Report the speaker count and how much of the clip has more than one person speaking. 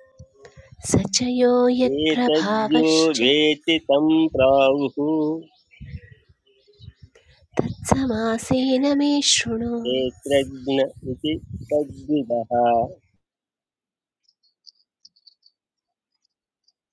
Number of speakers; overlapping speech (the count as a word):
two, about 6%